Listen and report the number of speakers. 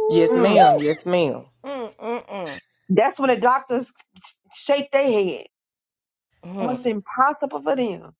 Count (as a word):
three